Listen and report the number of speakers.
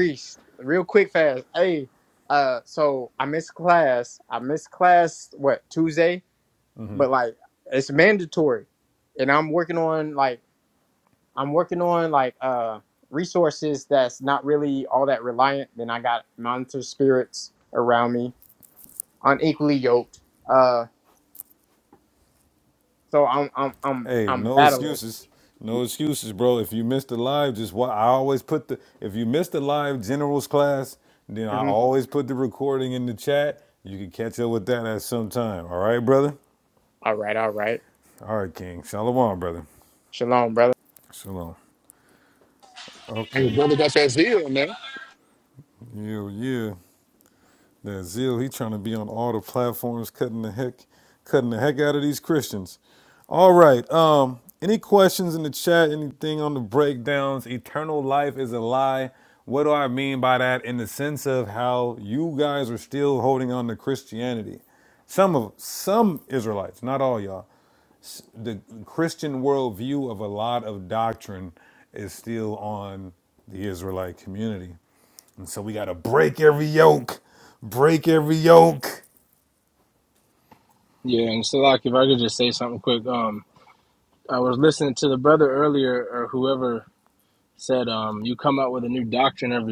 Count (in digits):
4